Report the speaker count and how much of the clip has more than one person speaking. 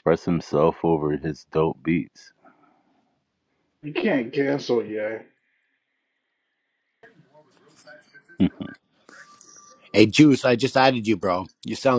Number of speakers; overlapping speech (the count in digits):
3, no overlap